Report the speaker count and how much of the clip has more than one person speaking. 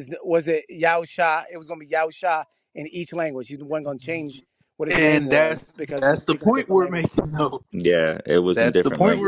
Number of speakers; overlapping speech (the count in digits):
3, about 28%